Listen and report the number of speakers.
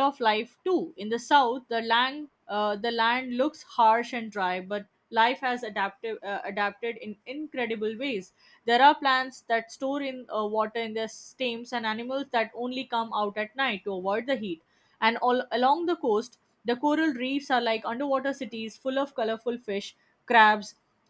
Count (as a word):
one